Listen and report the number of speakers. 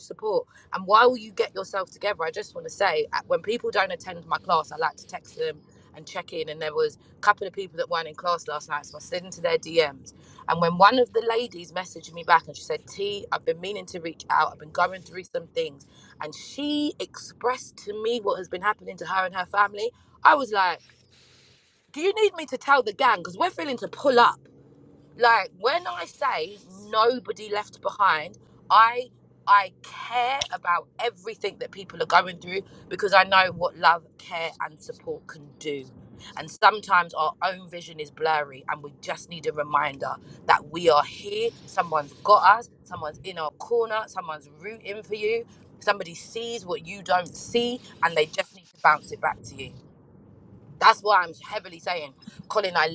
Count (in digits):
1